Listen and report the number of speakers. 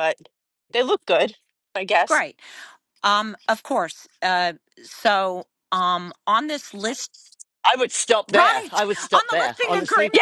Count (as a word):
three